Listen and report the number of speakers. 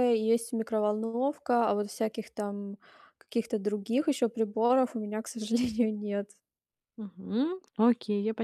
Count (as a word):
two